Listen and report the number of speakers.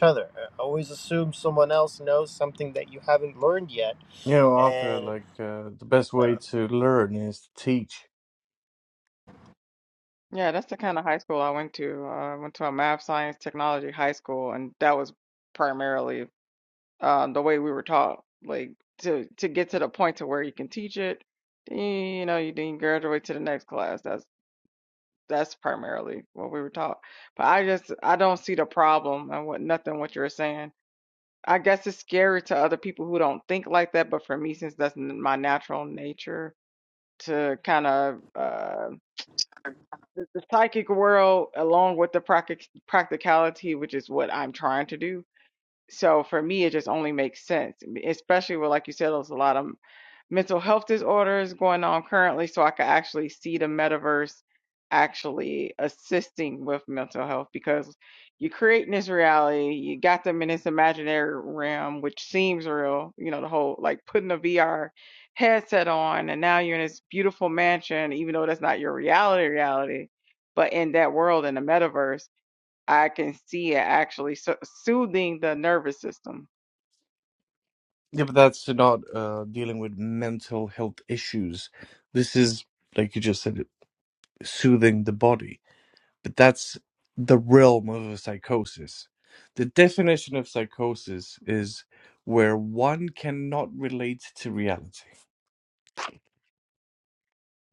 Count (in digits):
3